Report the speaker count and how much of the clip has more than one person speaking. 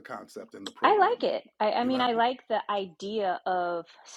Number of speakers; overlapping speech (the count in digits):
2, about 17%